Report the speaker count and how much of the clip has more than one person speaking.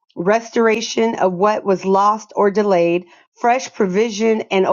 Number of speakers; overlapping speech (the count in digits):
1, no overlap